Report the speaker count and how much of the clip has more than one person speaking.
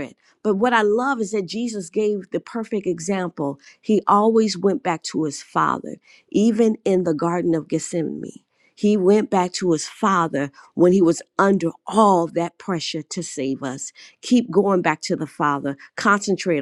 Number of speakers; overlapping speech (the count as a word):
one, no overlap